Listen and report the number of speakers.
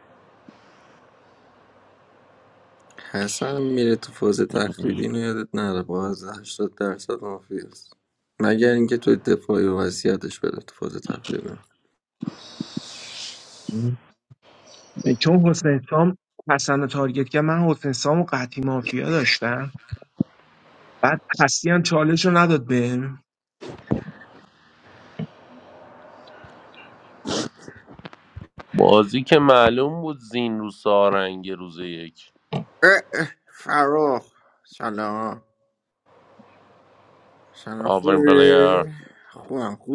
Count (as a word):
three